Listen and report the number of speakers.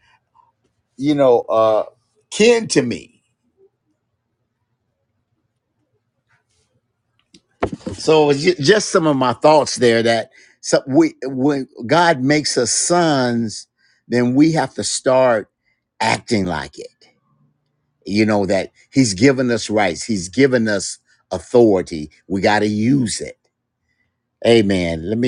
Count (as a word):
one